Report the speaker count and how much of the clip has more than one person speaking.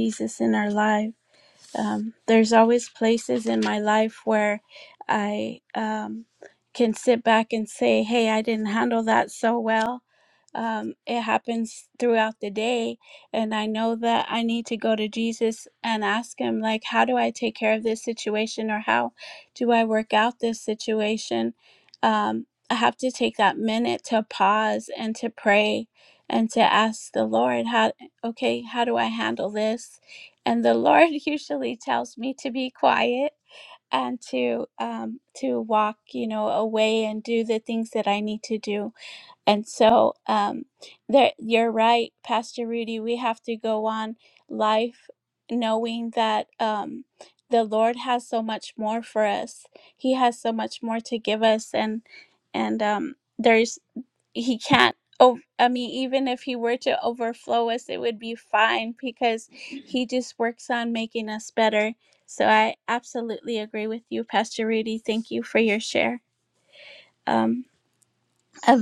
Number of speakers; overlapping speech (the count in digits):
1, no overlap